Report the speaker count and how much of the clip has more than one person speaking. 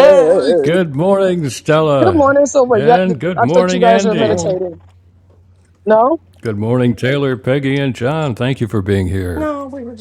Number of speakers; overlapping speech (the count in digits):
3, about 31%